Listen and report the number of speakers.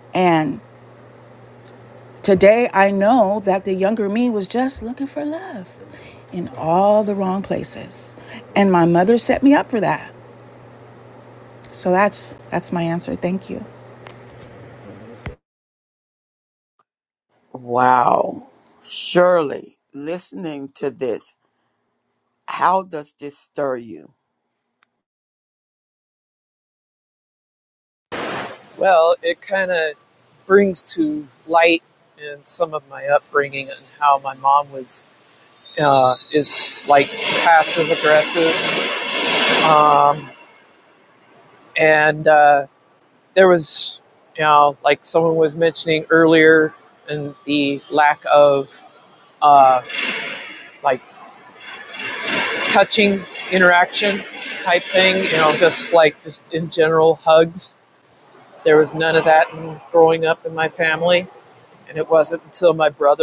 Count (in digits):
3